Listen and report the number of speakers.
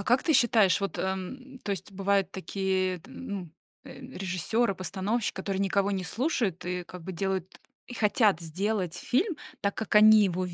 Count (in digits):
1